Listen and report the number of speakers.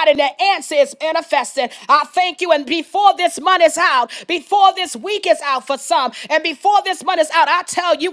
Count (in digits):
1